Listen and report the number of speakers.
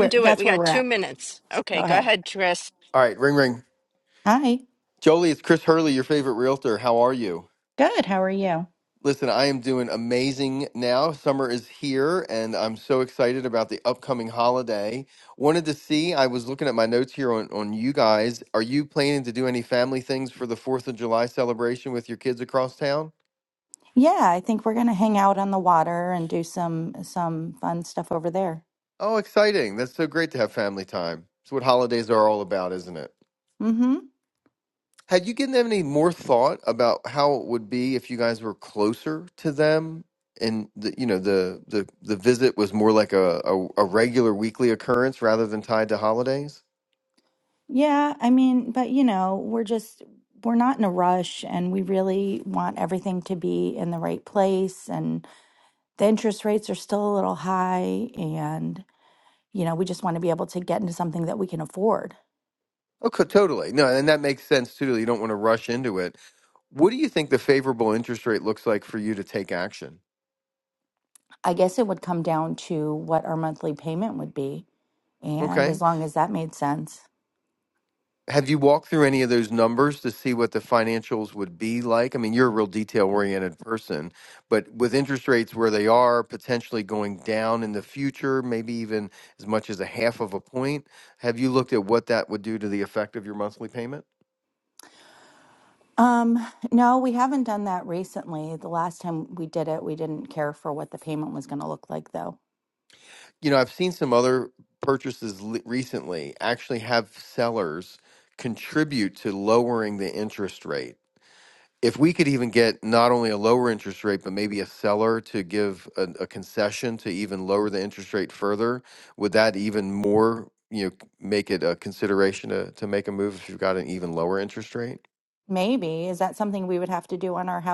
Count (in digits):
3